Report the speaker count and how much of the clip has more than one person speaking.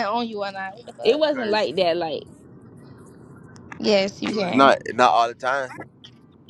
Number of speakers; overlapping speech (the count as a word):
three, about 15%